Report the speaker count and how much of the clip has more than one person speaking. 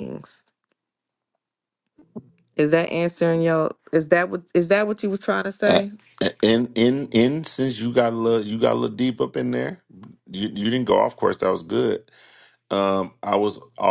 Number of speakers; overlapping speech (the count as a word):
two, about 1%